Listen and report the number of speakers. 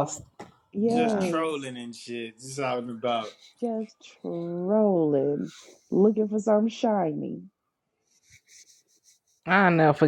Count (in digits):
3